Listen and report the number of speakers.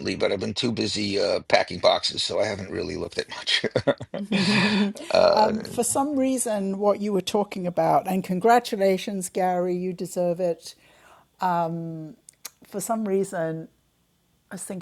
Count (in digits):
2